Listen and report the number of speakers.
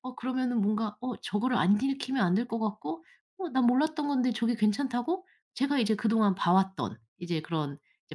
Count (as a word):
one